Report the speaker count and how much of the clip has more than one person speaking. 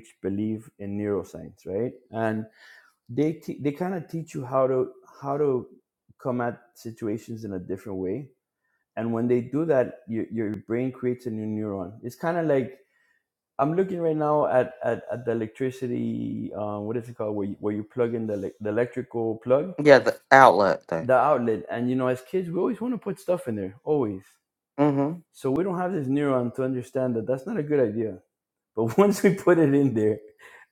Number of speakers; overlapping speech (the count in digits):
2, under 1%